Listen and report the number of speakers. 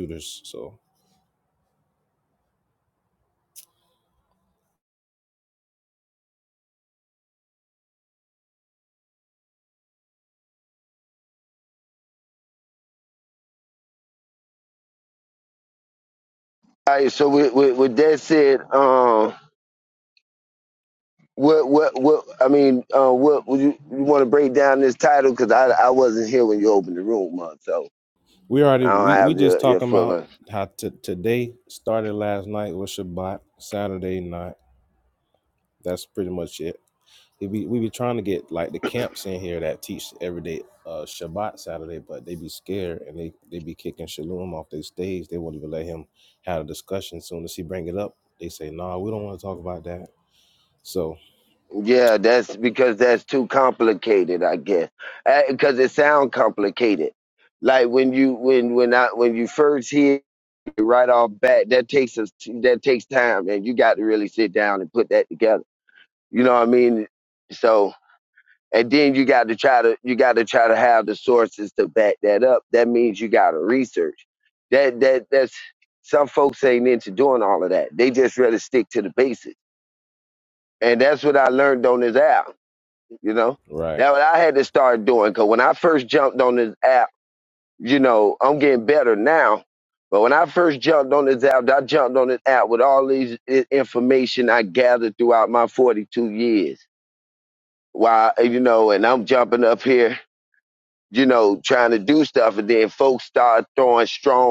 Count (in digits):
2